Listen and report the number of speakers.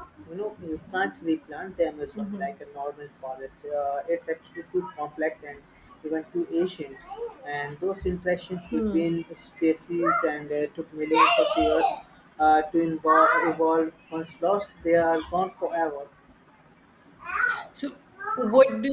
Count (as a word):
two